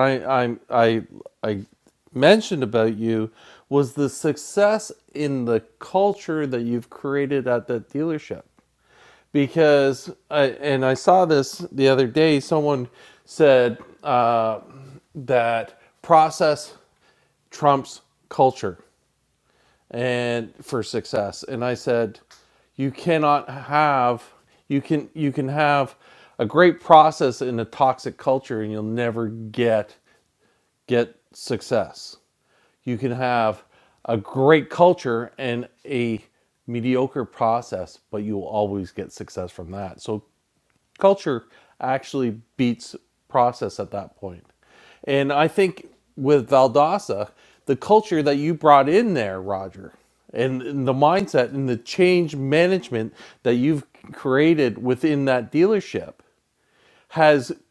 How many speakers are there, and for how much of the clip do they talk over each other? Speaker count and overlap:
1, no overlap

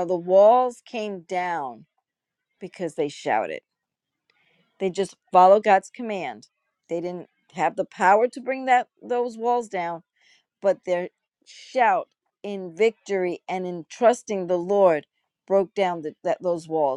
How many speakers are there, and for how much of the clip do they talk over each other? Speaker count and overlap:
1, no overlap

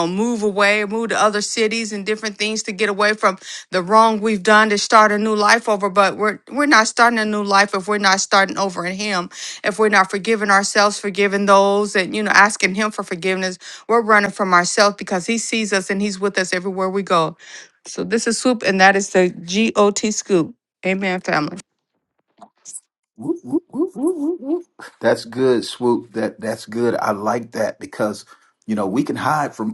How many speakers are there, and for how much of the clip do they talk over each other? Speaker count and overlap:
2, no overlap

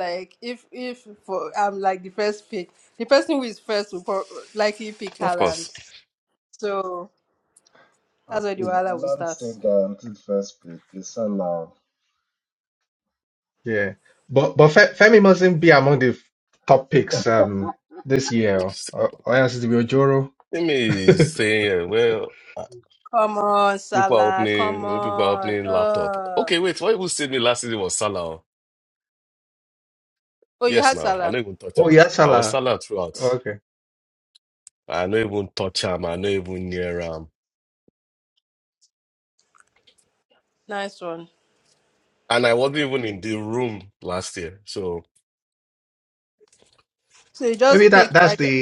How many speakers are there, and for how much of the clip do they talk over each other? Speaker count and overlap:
4, about 13%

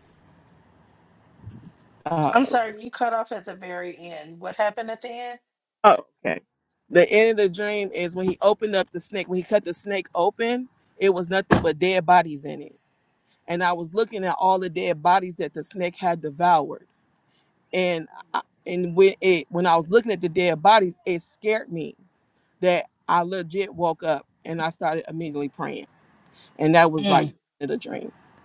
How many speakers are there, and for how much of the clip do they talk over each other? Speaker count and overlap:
2, about 1%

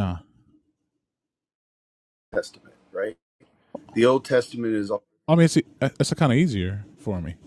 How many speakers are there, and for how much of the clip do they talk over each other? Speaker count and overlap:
2, no overlap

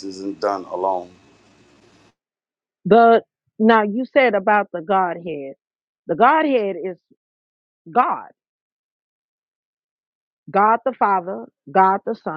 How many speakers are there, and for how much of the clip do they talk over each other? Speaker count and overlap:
2, no overlap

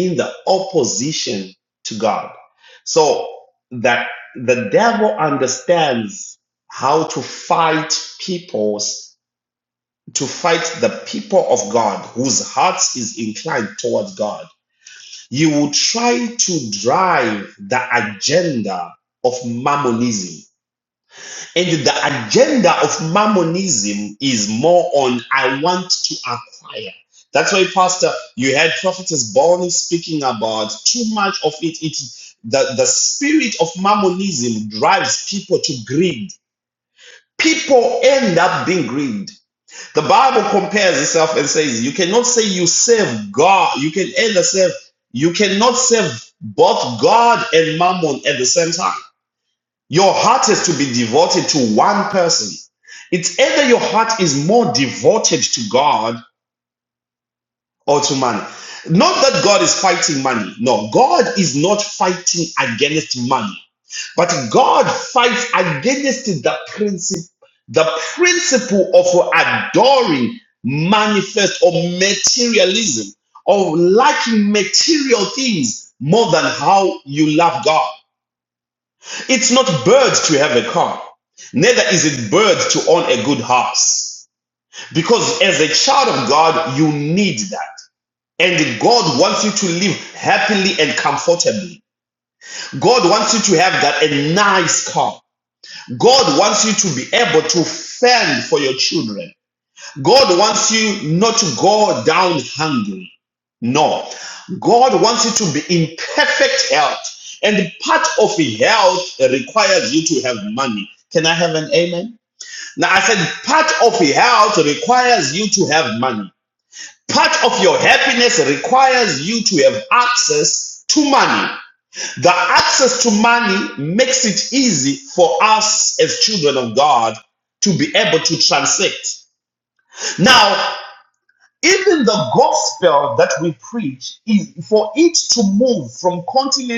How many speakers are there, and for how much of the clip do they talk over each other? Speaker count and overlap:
1, no overlap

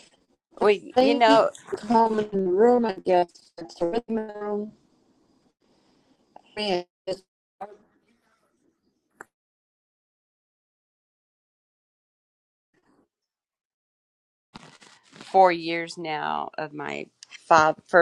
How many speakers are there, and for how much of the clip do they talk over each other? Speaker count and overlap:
2, about 2%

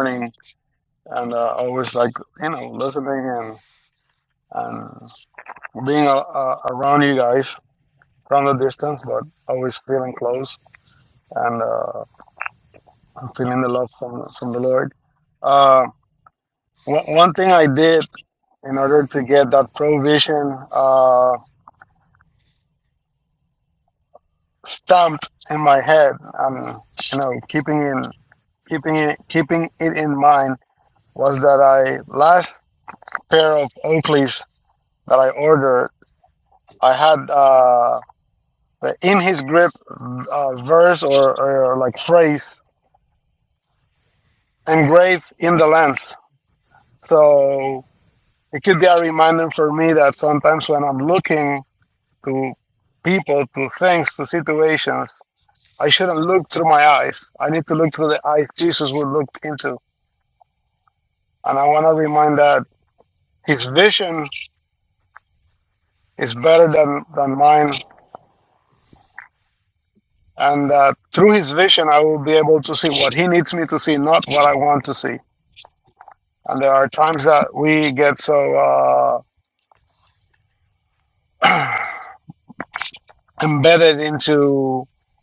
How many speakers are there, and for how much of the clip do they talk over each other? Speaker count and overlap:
1, no overlap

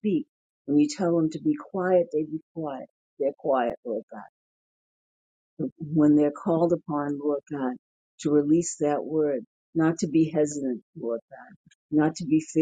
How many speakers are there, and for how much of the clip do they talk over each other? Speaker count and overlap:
1, no overlap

